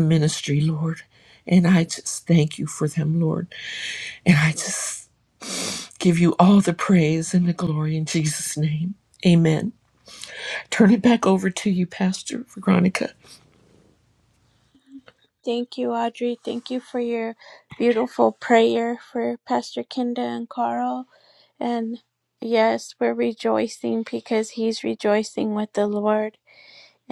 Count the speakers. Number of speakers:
two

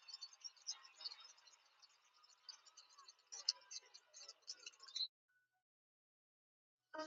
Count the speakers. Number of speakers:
zero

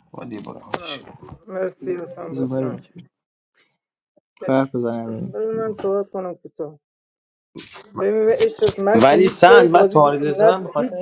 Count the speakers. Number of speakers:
three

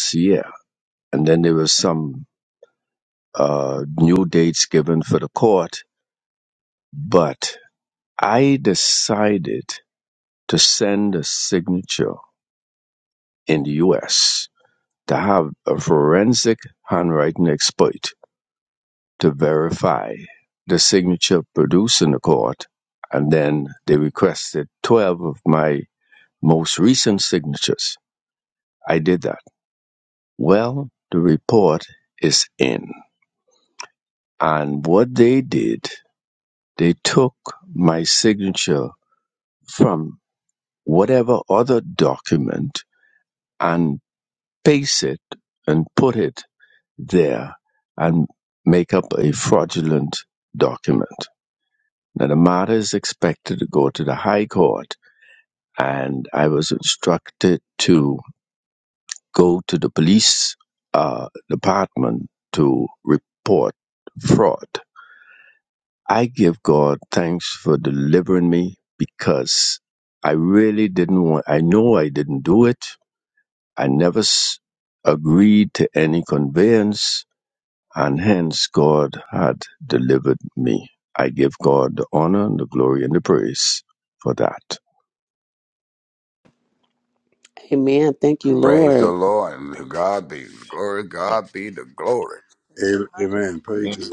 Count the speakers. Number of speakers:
four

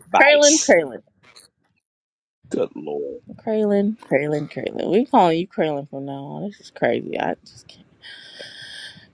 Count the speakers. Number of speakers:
two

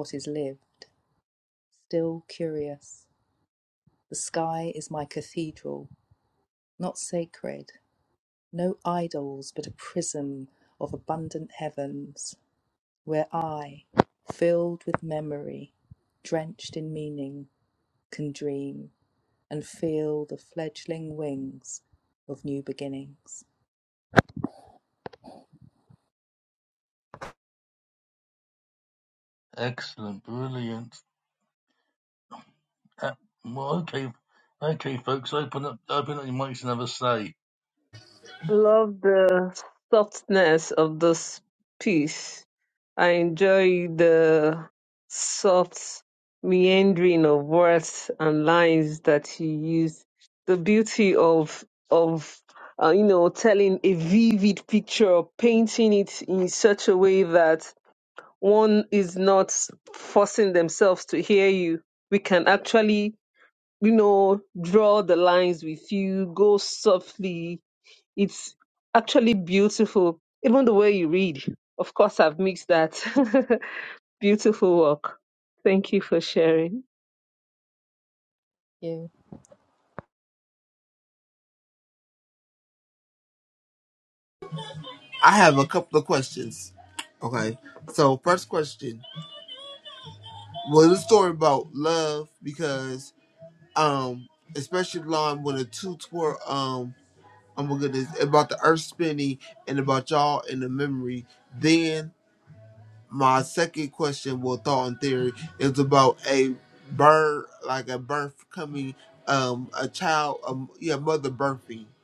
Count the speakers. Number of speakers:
four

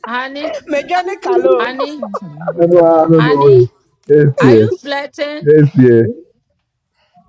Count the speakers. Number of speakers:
three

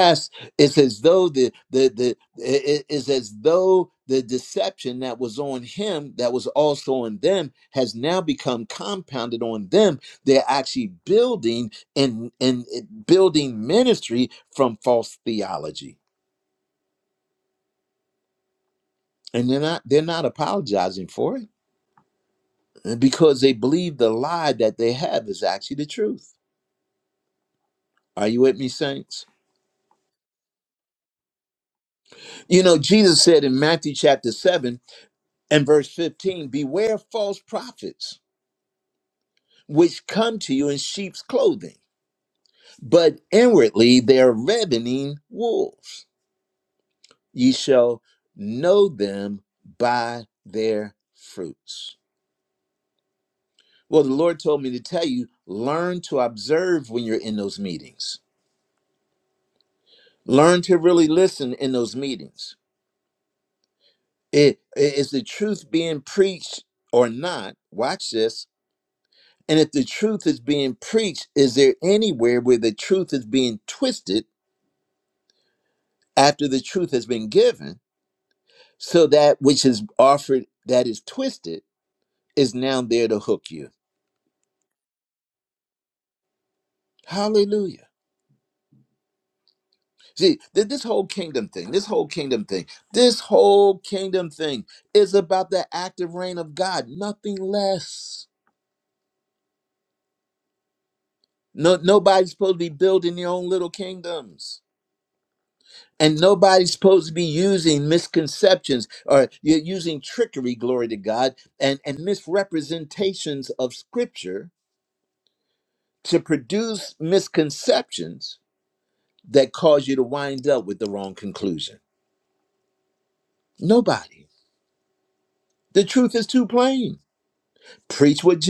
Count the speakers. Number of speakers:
one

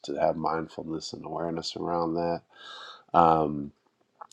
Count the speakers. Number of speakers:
one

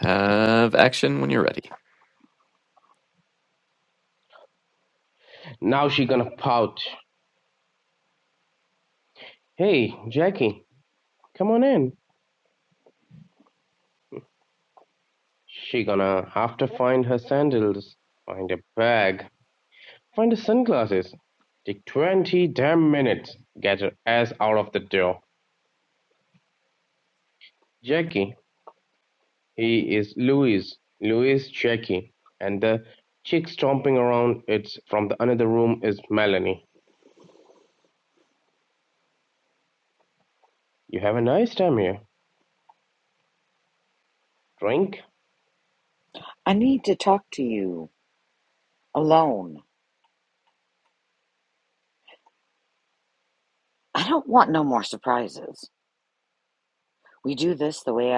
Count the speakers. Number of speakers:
three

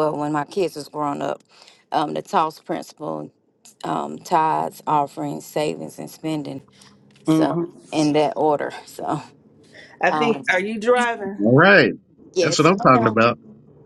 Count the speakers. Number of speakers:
three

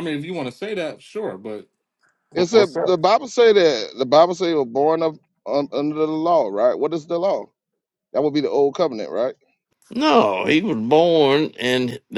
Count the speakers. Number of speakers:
three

